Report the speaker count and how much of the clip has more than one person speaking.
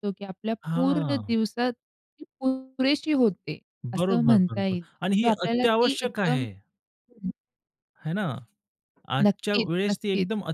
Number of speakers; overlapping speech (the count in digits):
2, about 37%